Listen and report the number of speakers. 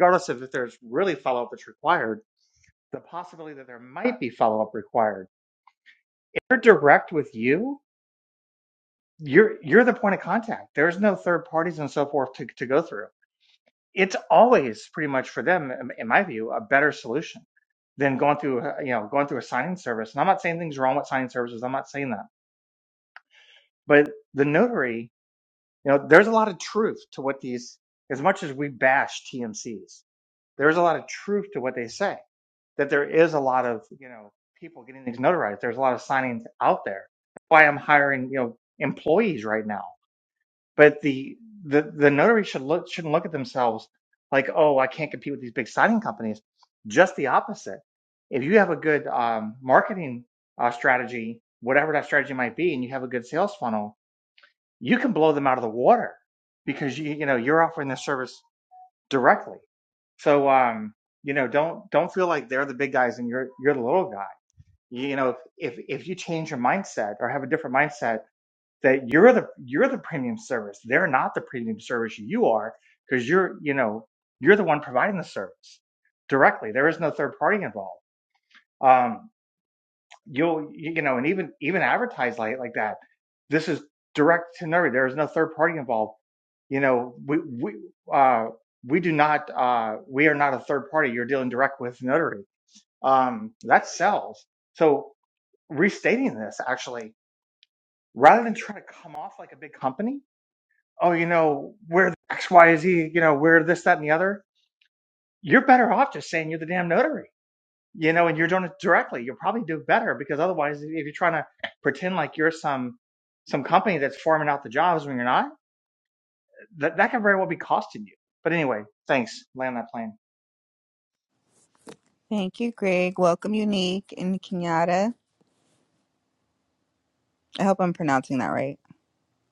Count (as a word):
two